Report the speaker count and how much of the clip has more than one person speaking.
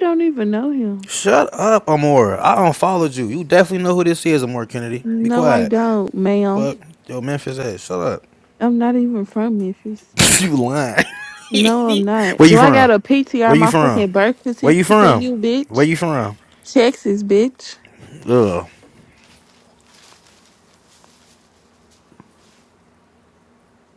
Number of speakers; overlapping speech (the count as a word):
two, about 10%